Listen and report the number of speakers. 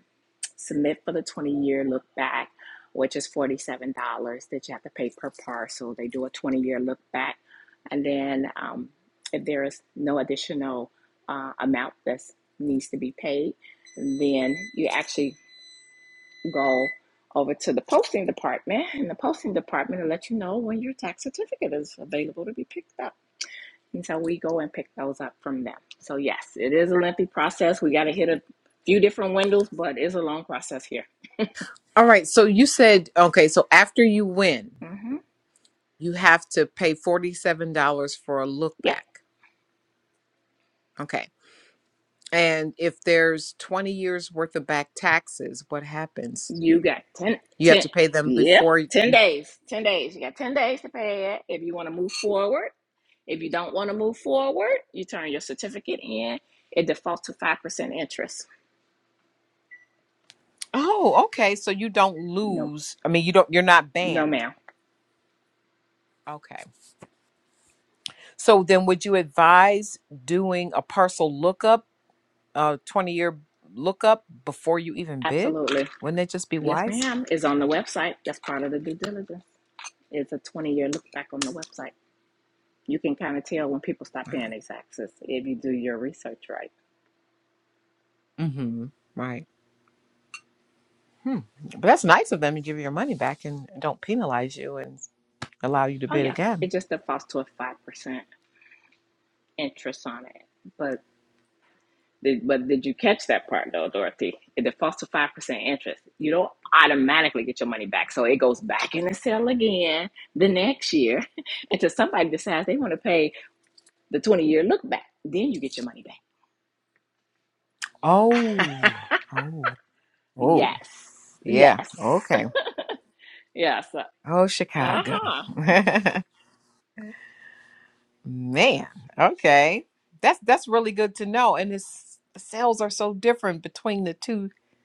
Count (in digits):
2